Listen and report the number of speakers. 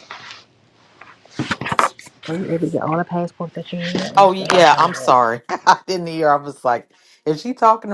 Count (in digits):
2